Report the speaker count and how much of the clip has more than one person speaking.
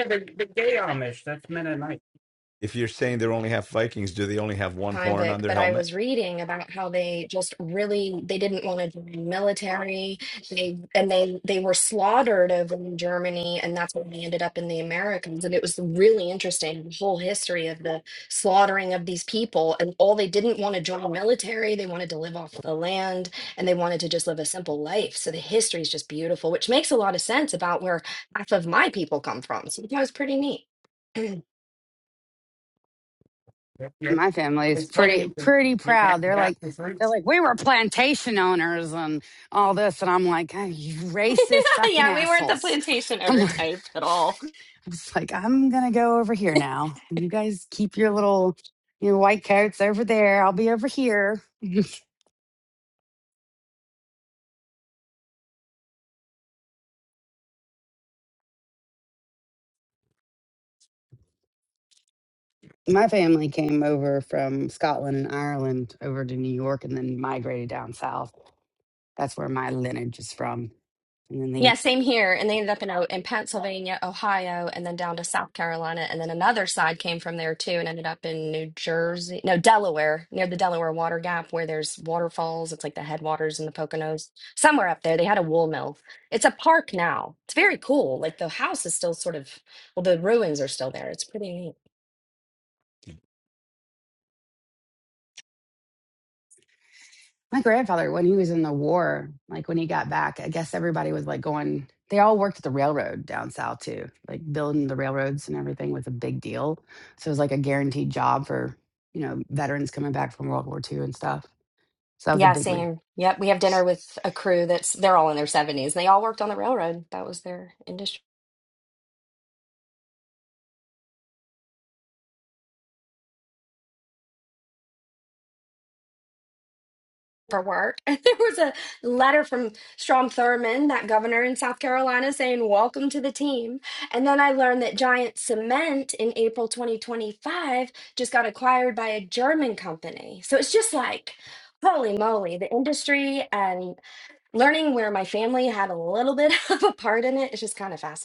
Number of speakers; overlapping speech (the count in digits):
4, about 3%